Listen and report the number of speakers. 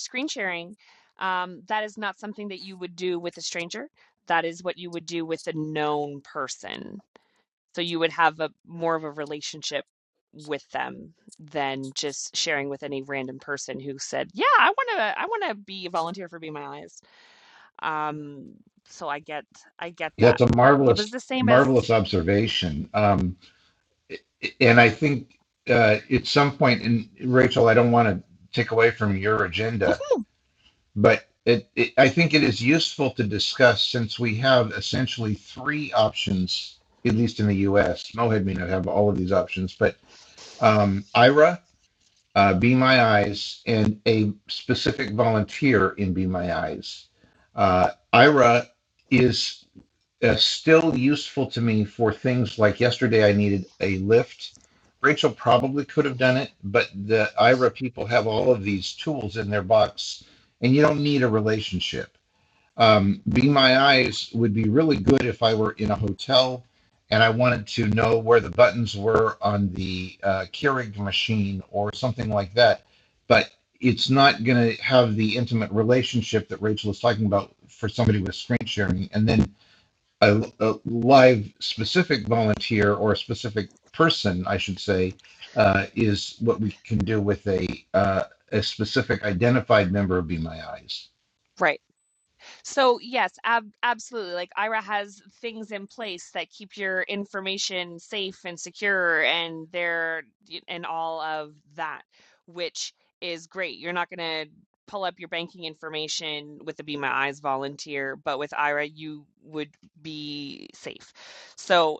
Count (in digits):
2